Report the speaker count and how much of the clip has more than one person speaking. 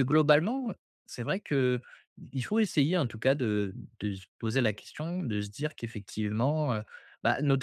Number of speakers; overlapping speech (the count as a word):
one, no overlap